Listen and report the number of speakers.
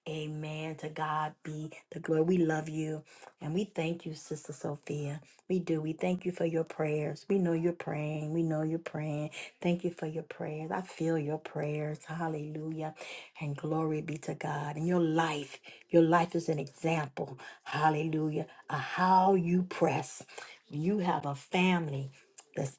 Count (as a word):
one